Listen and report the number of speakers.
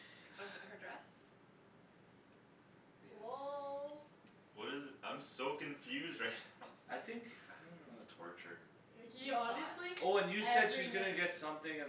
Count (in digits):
4